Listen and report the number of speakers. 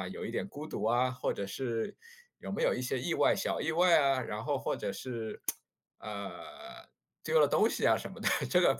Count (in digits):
1